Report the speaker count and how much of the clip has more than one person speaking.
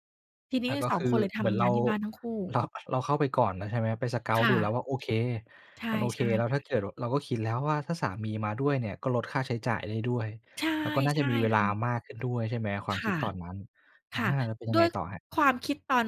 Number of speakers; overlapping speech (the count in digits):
2, about 22%